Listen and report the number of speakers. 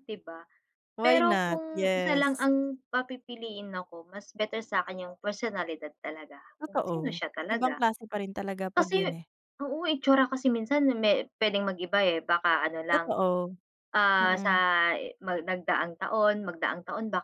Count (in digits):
2